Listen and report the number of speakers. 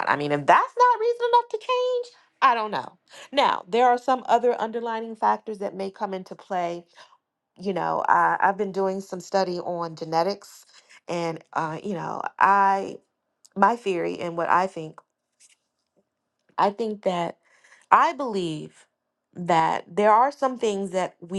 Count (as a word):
one